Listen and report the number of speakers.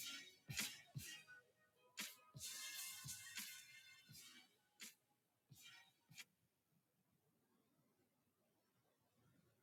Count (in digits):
0